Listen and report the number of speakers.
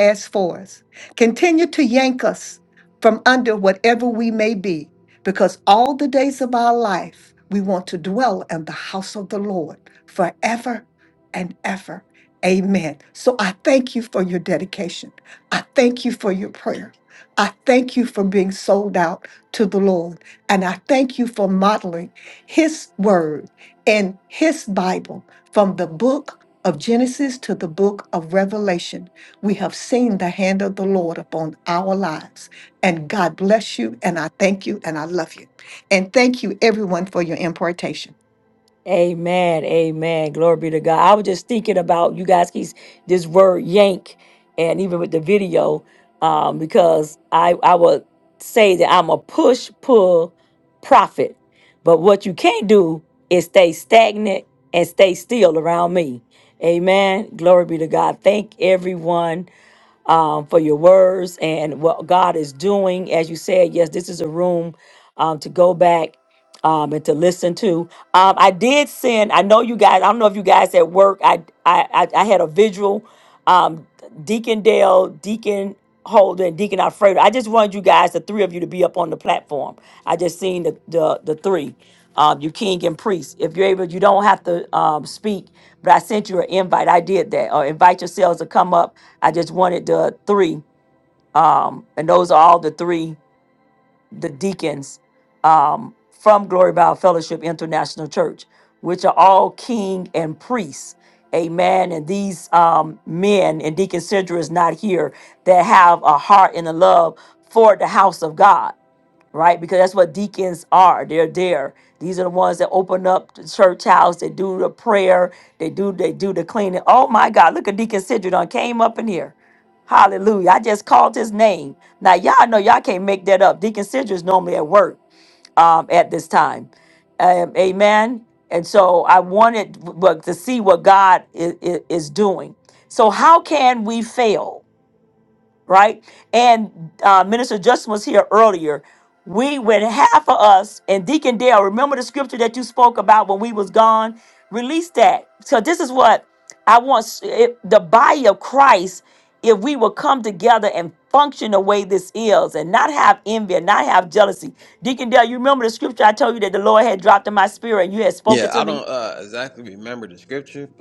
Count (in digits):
3